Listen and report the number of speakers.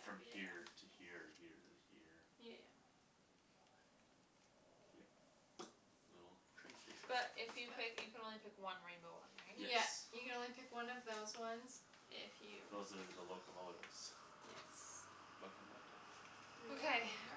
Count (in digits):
3